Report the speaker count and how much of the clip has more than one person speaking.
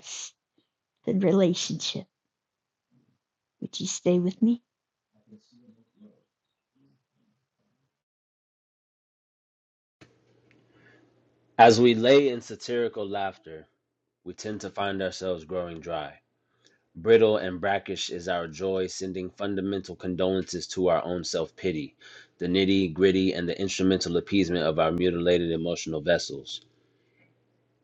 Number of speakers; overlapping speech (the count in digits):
2, no overlap